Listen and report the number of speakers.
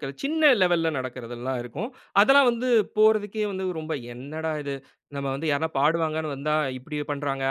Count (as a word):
one